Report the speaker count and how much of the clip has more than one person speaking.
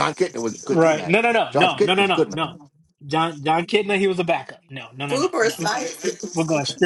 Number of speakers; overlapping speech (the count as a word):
three, about 29%